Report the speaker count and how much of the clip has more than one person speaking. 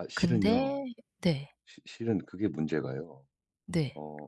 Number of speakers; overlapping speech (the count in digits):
2, about 13%